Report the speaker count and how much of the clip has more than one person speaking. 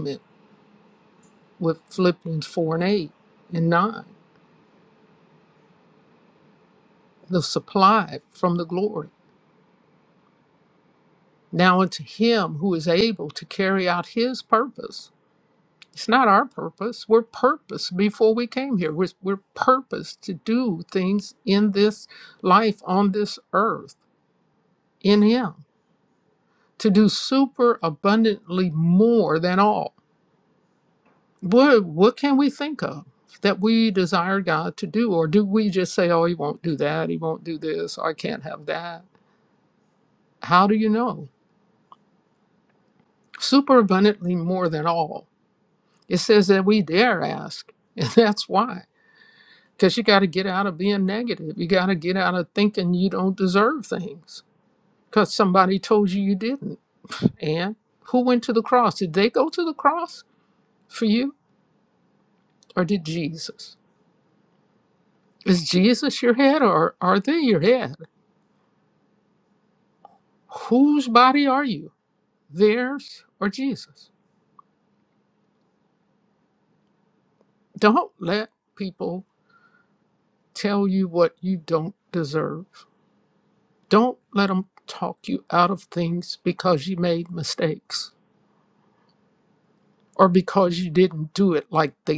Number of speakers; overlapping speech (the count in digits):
1, no overlap